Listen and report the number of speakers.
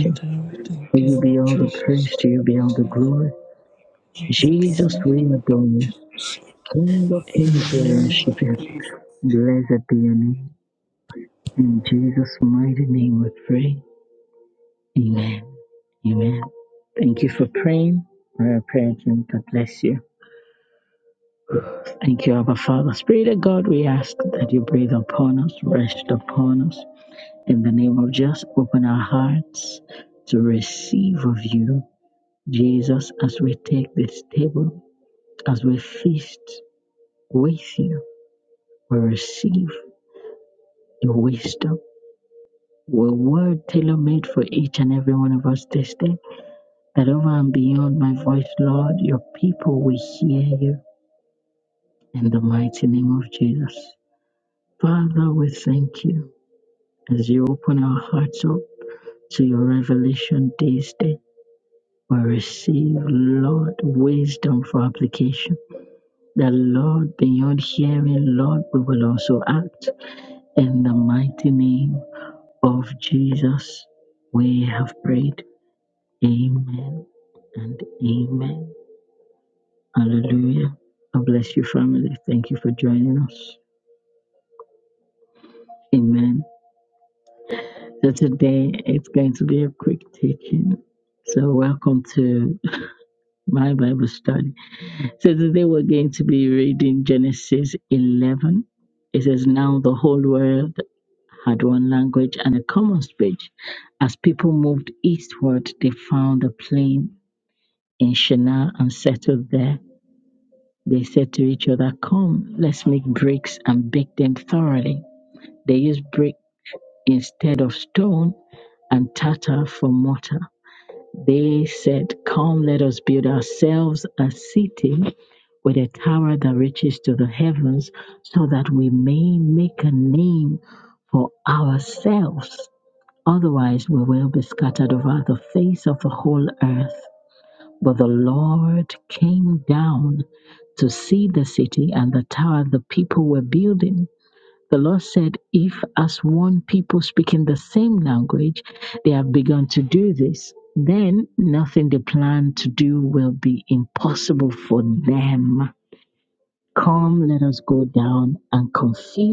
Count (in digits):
2